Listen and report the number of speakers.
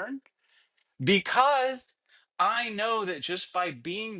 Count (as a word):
one